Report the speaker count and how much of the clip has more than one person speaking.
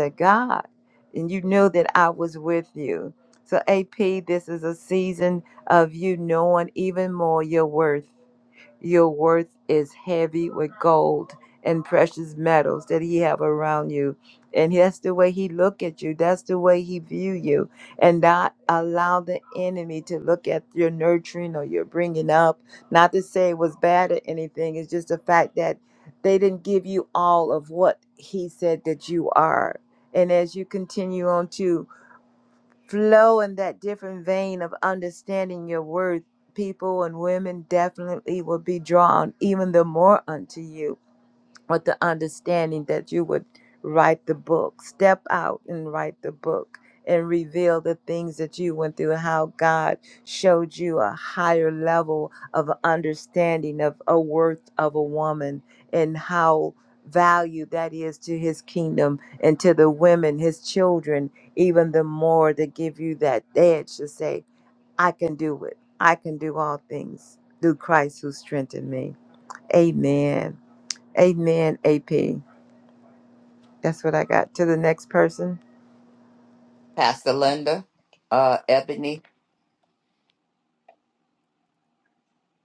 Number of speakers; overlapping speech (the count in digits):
2, no overlap